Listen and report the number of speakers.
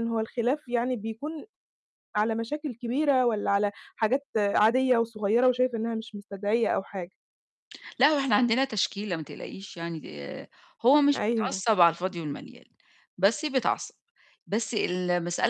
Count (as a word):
two